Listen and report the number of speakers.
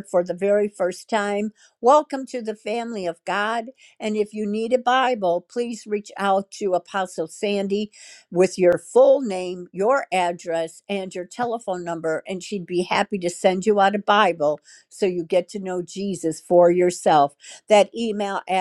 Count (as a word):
one